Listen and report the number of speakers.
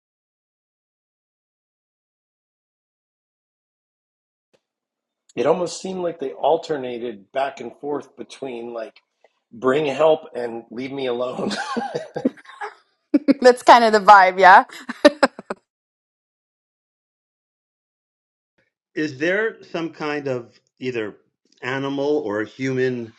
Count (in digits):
3